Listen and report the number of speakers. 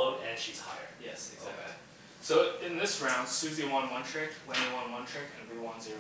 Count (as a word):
two